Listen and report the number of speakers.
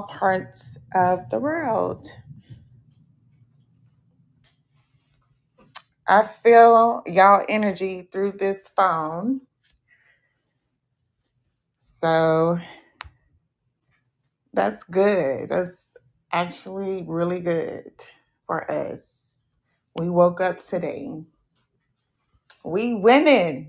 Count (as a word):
one